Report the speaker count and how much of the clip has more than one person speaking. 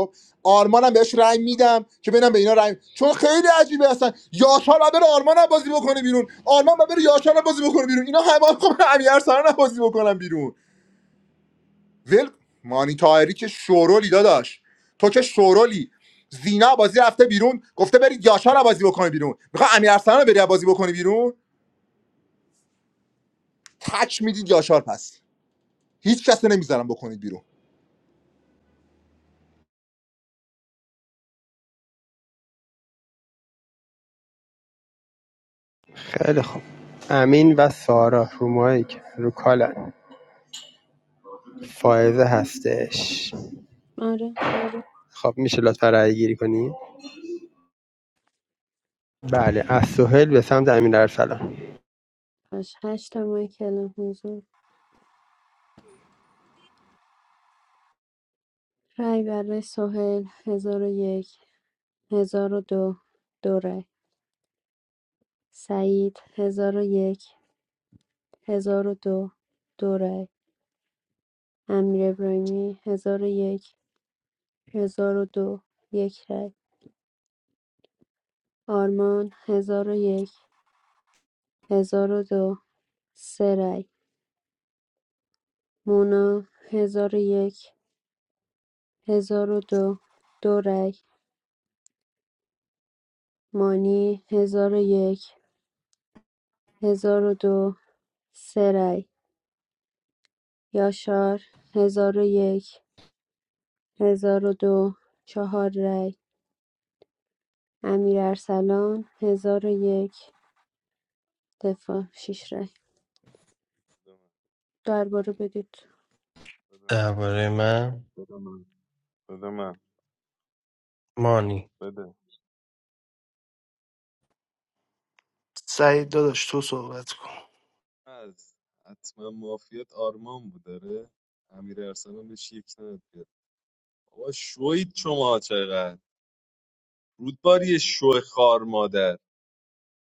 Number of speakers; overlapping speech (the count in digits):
6, no overlap